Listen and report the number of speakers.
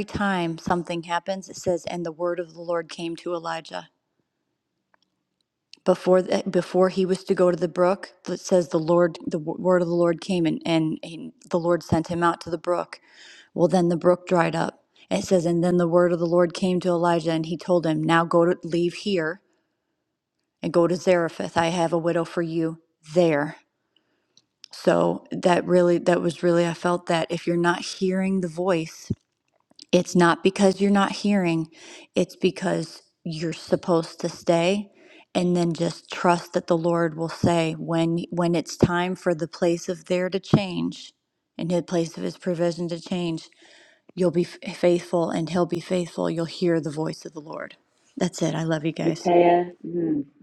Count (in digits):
2